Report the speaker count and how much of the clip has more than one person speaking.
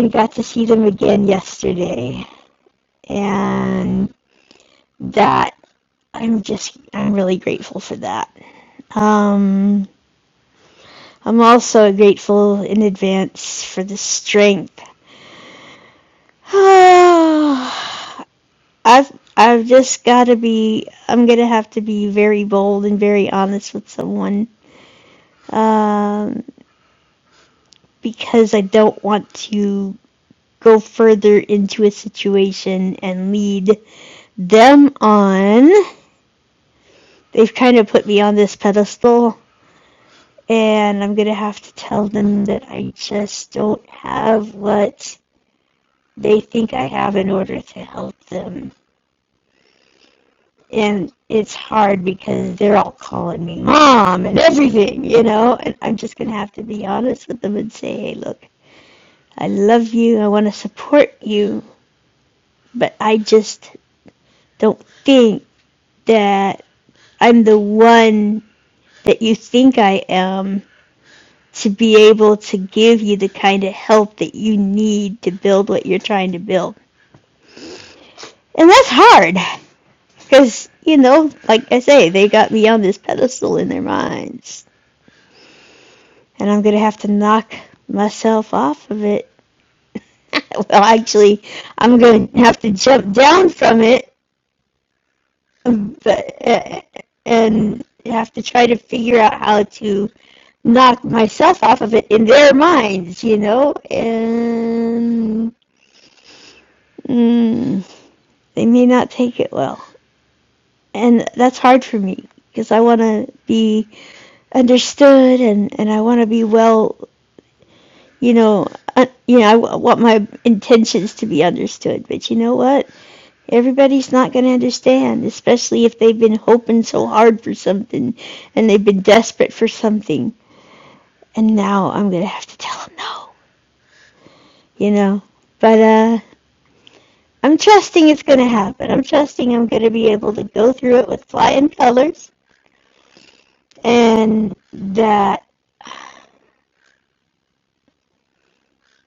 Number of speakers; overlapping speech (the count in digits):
1, no overlap